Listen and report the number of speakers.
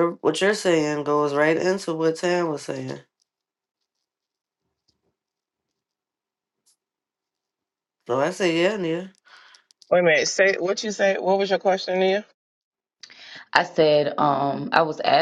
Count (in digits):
3